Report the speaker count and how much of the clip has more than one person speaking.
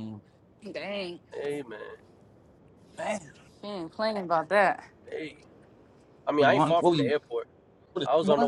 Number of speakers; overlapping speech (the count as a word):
three, about 14%